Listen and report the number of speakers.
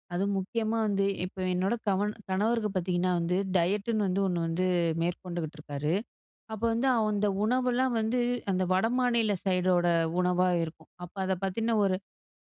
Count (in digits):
1